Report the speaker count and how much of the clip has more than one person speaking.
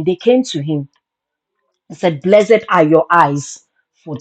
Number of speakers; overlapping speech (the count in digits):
1, no overlap